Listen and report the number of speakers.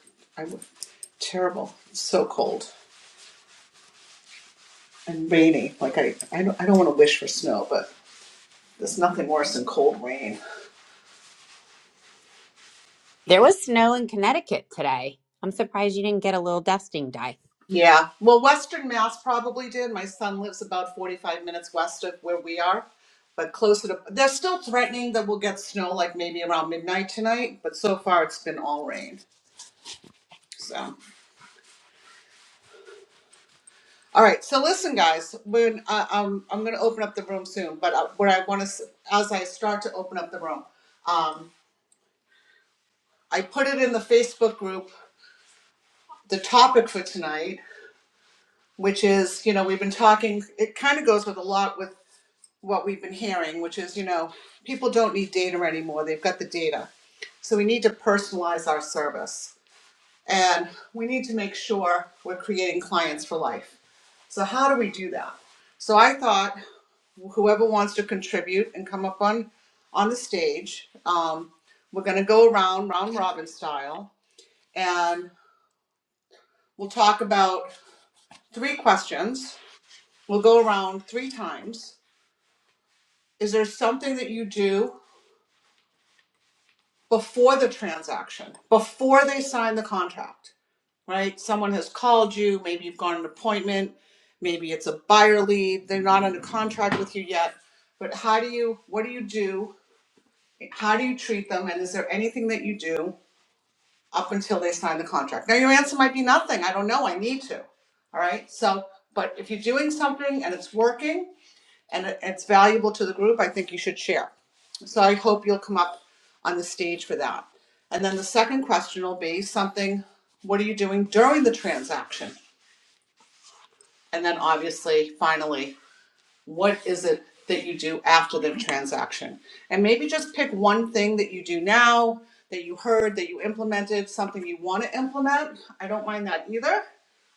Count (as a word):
two